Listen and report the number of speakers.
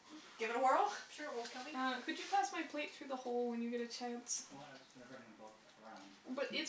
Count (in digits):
3